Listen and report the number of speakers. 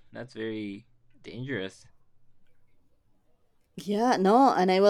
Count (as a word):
two